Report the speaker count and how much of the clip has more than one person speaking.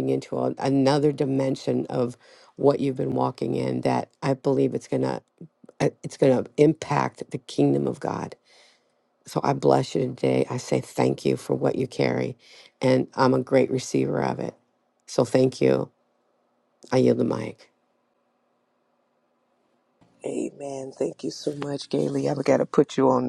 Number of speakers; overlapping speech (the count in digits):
2, no overlap